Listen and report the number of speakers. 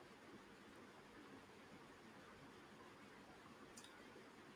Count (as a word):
zero